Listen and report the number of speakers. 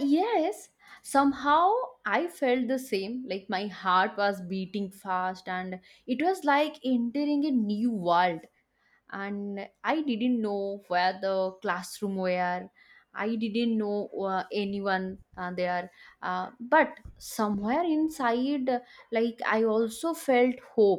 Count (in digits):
1